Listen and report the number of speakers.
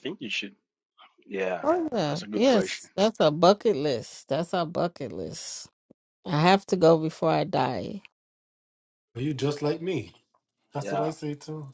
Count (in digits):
3